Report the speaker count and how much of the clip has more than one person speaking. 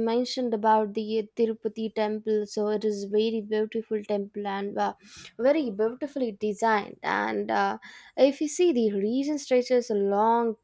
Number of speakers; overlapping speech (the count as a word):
one, no overlap